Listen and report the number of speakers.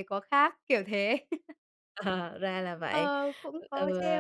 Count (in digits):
2